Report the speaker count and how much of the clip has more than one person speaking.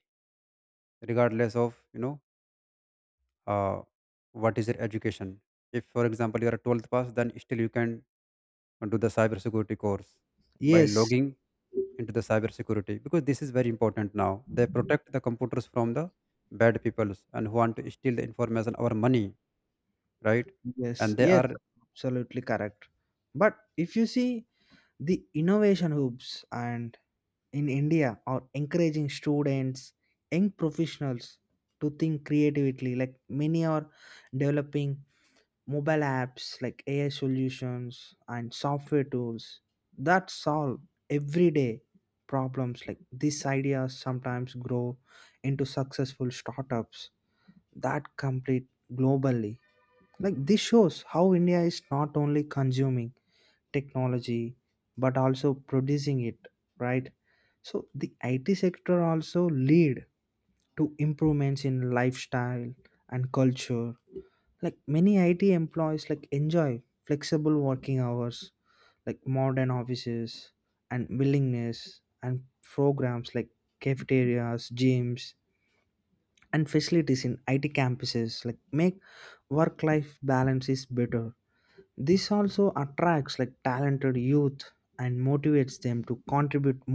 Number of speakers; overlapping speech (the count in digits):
2, about 1%